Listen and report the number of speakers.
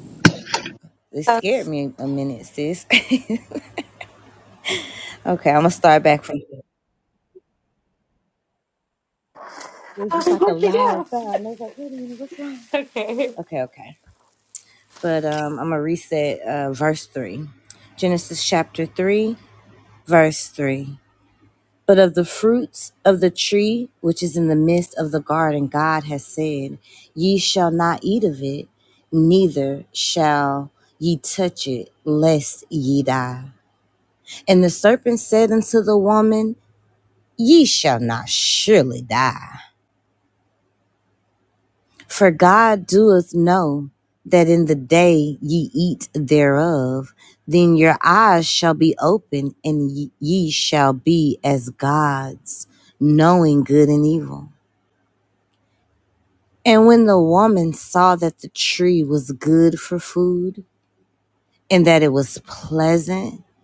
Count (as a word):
two